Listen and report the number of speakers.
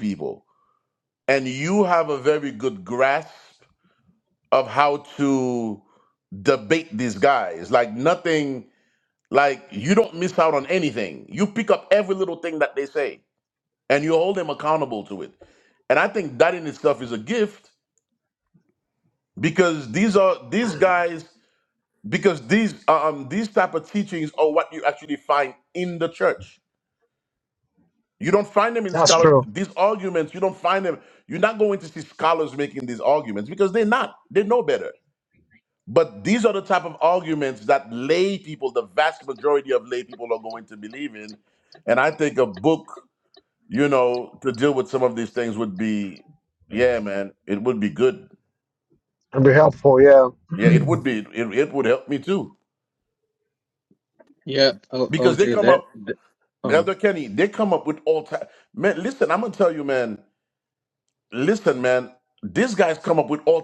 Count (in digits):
3